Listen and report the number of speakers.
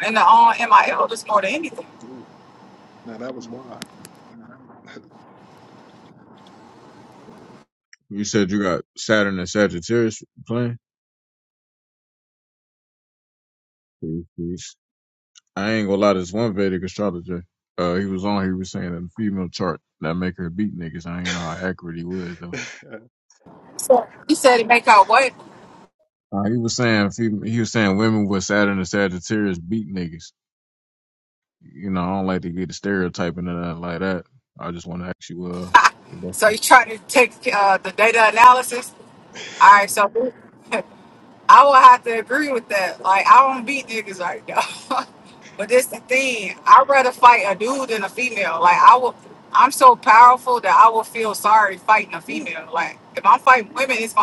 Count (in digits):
3